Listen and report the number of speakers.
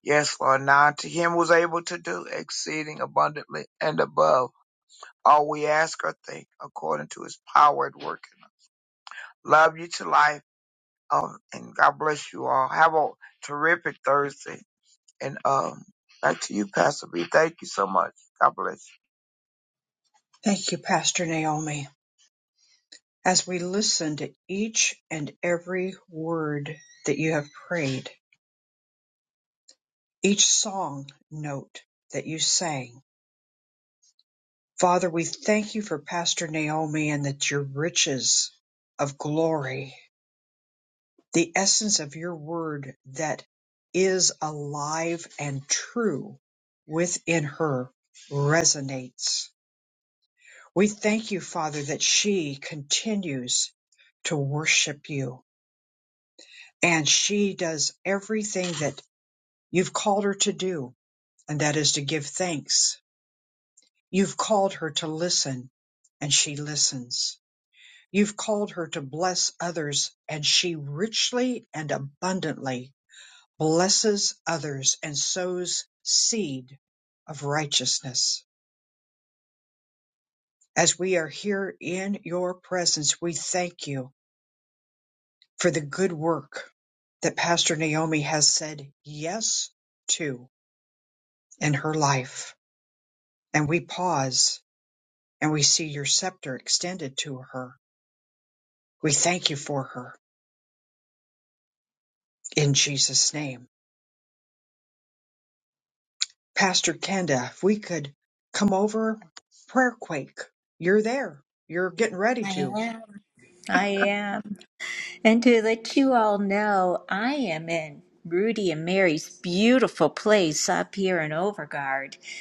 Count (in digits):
3